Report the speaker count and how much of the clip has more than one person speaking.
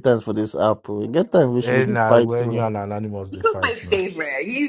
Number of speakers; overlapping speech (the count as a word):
three, about 35%